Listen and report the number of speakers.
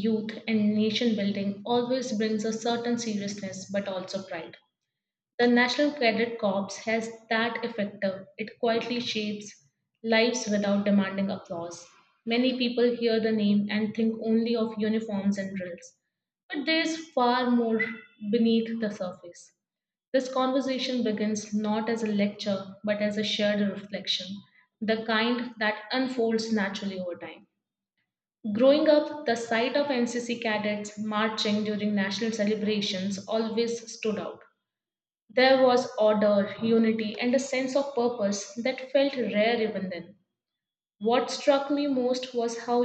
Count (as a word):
one